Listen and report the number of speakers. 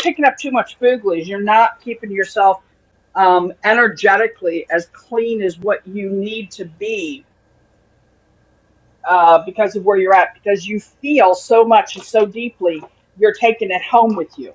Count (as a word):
one